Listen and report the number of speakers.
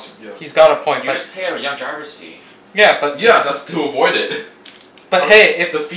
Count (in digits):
3